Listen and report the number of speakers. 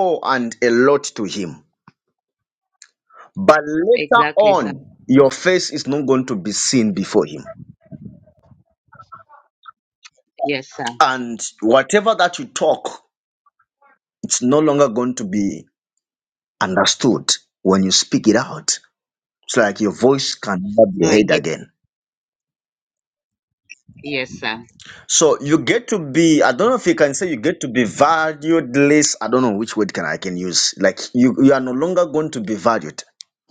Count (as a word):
two